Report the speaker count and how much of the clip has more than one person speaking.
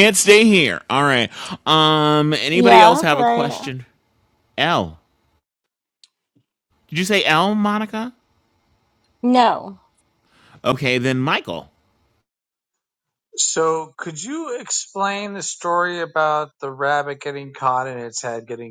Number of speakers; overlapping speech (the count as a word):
three, about 6%